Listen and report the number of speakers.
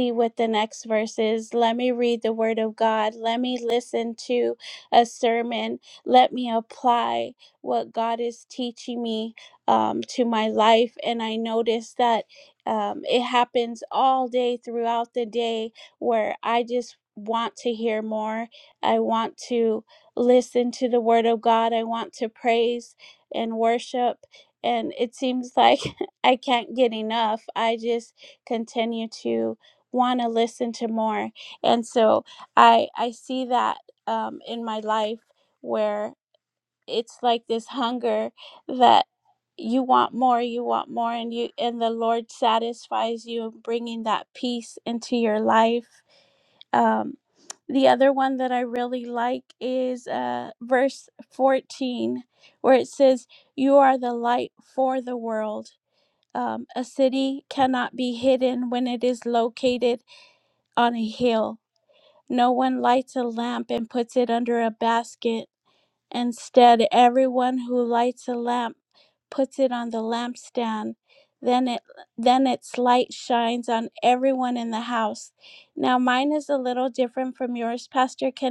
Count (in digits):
1